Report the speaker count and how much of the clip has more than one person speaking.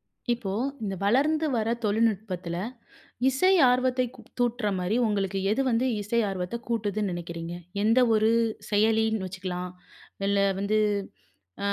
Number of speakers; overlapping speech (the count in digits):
1, no overlap